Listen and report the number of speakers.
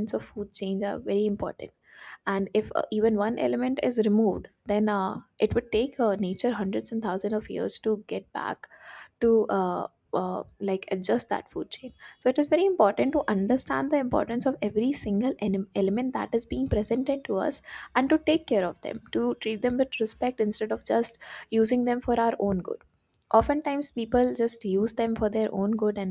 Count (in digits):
1